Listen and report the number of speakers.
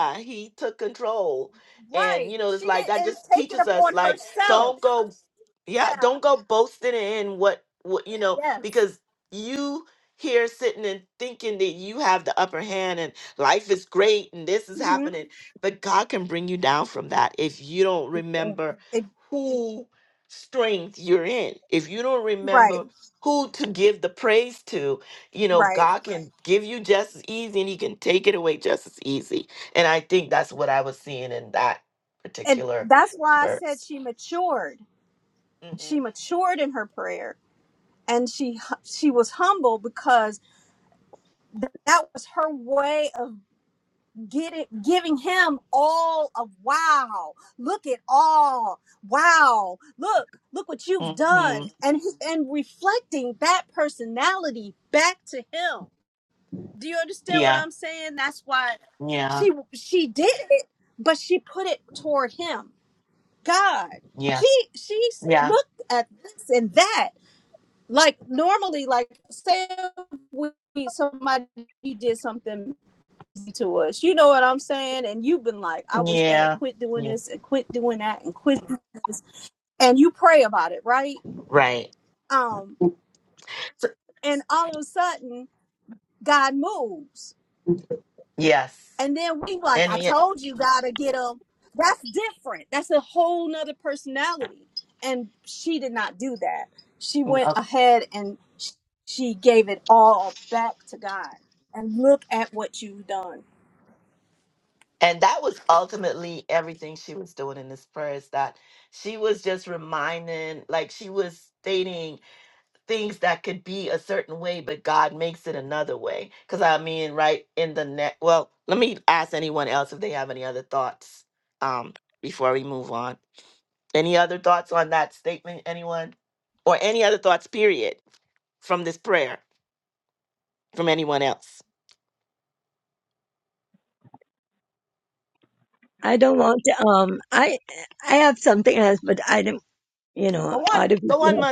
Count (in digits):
3